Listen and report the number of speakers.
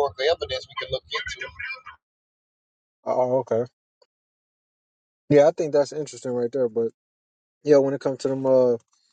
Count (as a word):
two